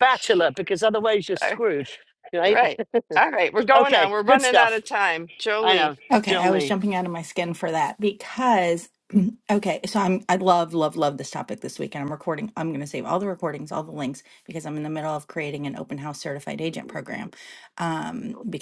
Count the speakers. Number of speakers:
3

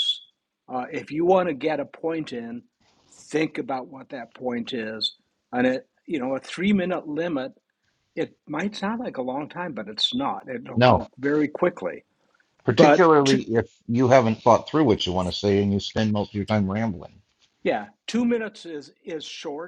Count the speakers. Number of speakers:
2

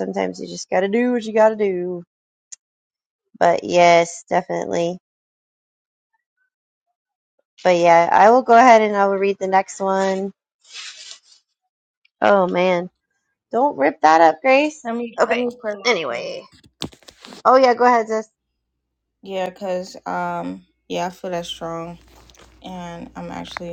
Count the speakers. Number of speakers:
2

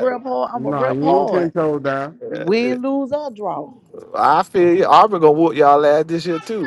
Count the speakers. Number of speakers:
3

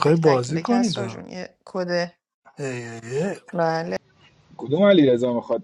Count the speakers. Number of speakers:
3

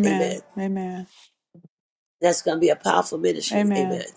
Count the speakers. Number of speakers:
2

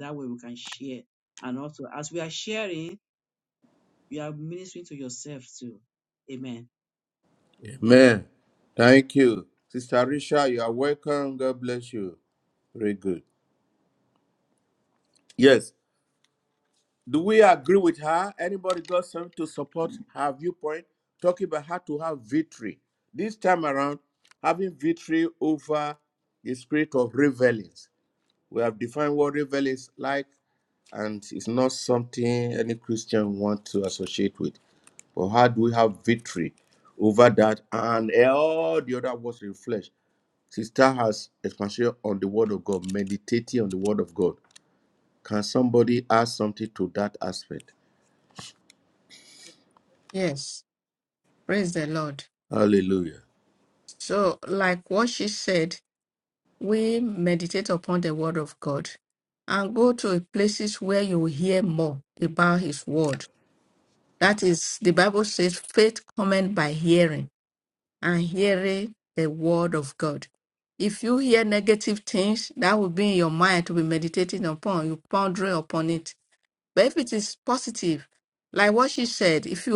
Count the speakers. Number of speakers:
3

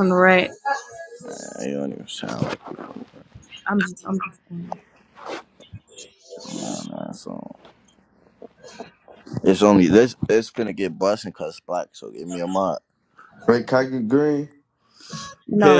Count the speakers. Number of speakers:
3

